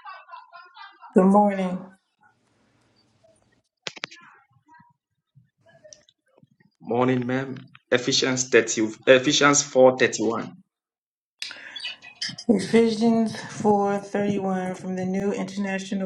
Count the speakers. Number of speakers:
2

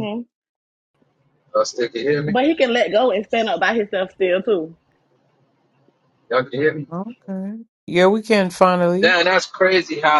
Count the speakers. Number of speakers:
3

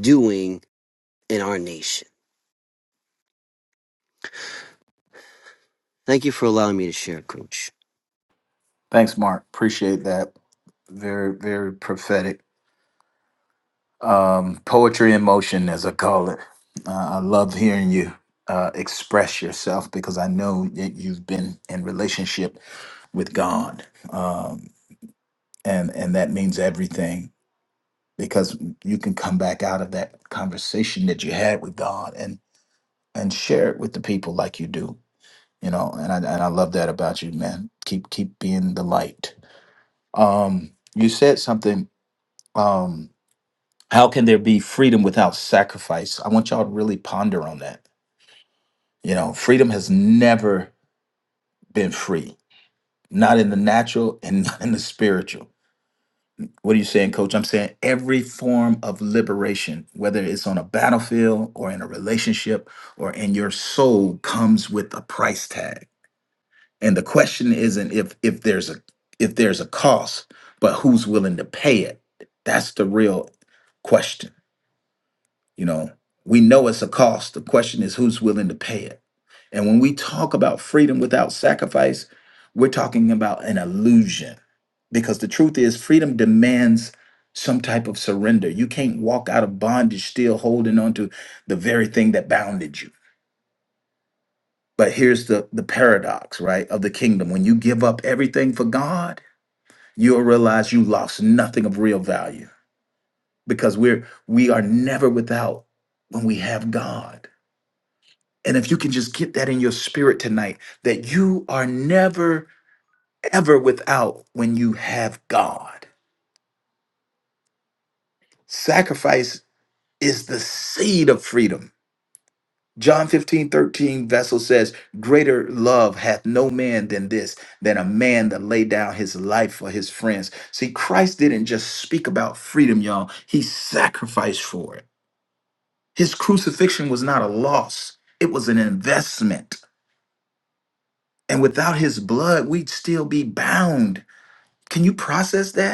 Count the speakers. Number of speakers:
2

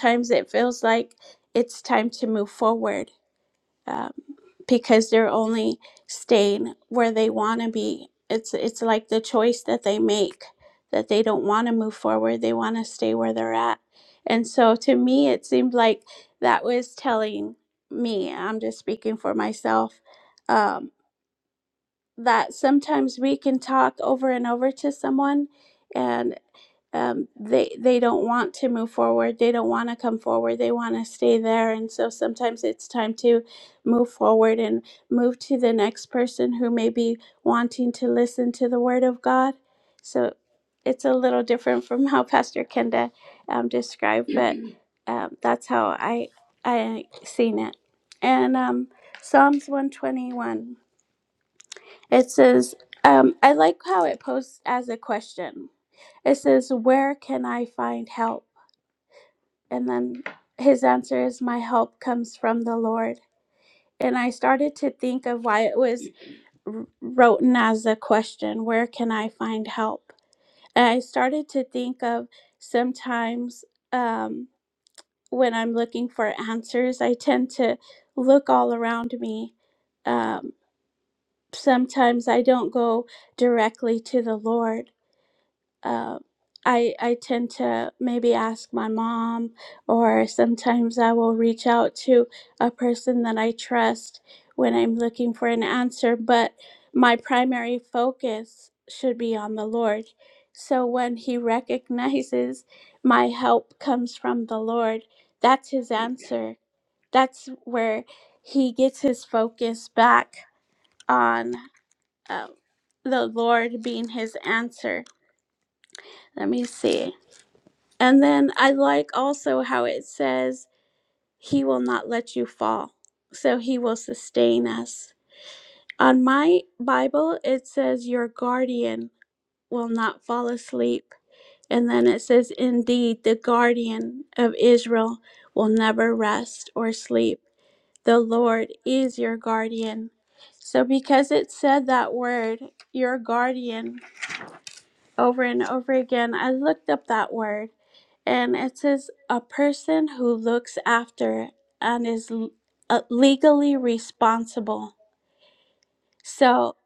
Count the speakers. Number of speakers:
1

